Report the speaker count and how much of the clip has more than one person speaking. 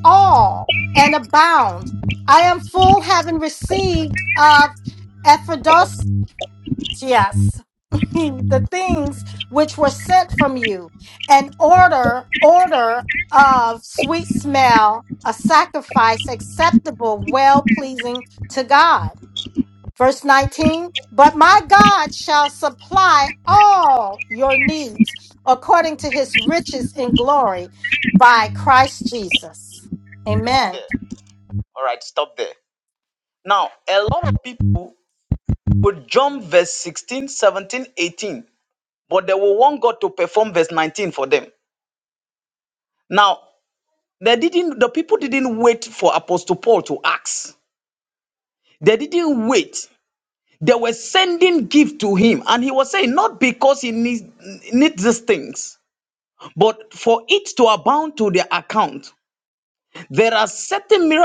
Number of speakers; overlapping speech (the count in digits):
2, about 1%